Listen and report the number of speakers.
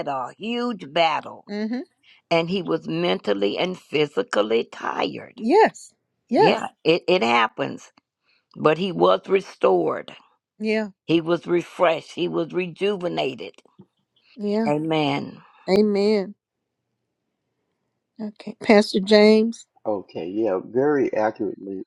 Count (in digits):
3